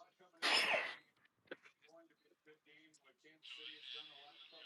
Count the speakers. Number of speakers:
zero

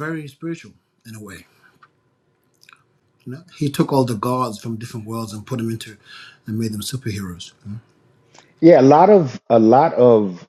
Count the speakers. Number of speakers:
two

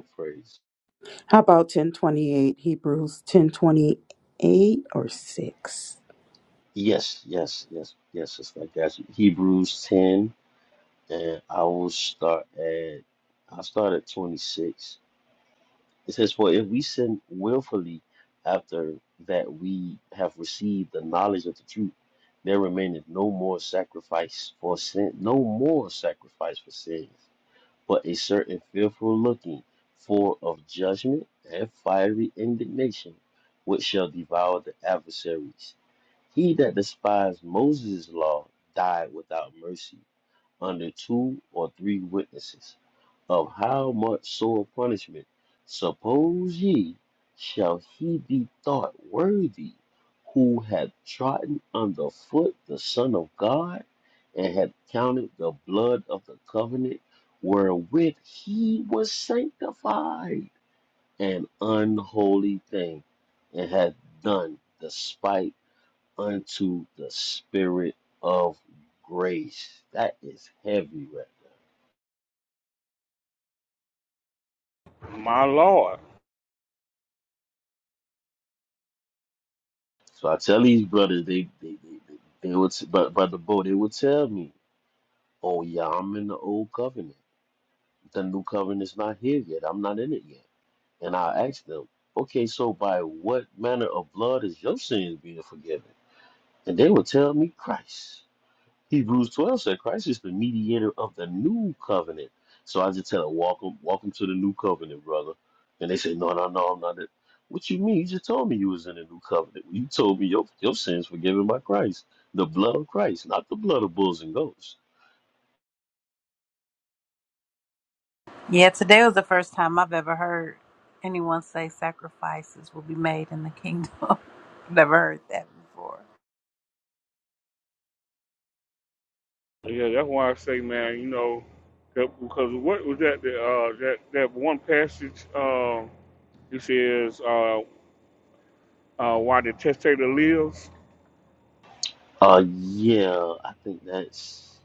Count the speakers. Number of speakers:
four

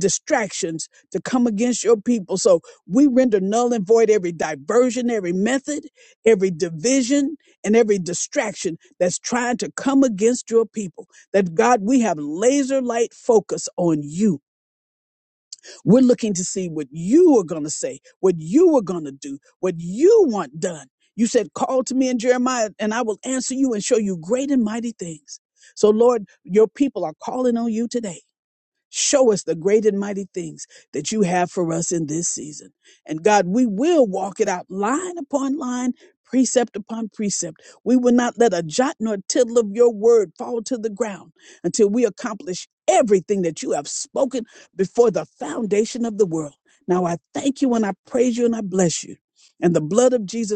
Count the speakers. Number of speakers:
one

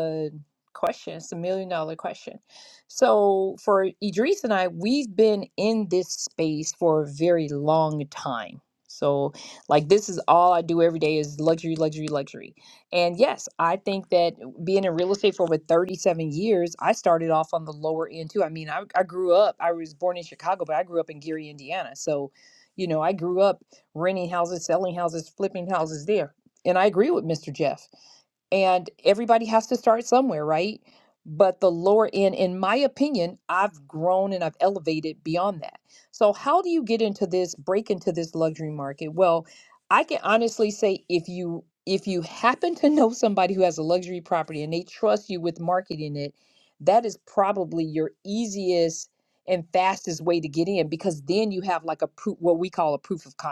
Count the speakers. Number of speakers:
one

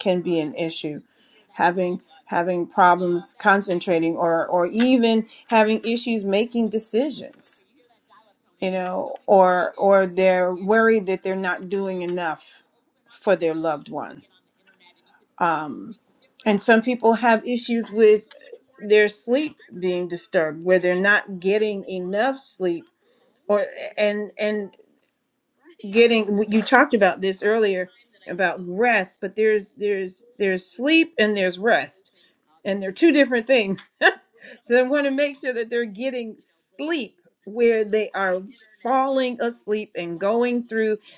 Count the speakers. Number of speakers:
one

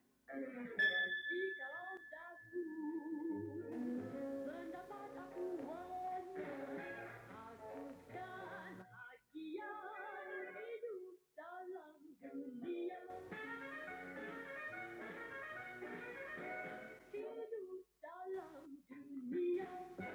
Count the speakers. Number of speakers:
zero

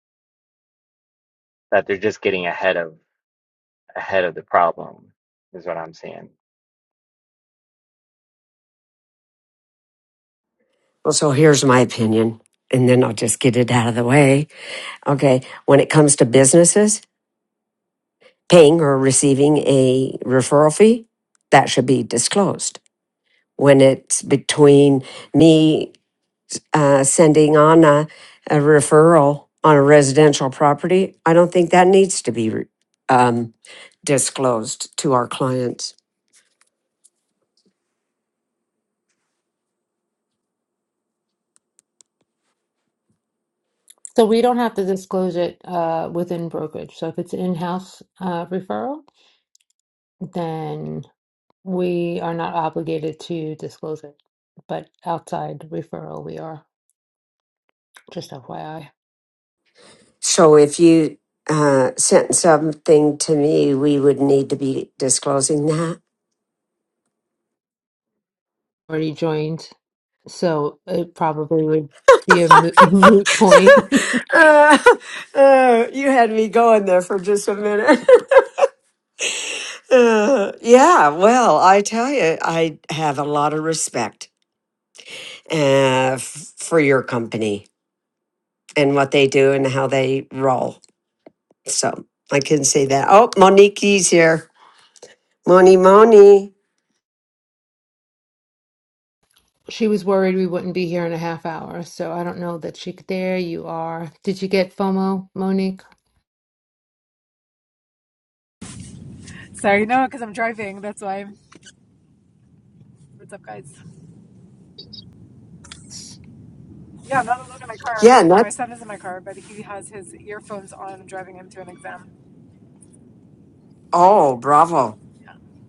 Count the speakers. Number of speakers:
four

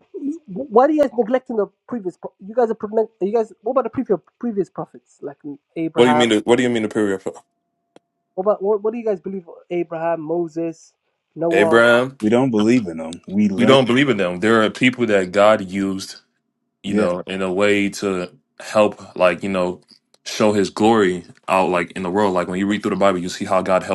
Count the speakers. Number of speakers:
three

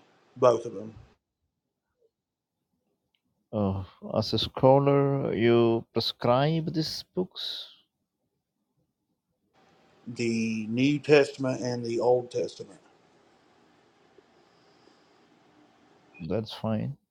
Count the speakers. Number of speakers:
two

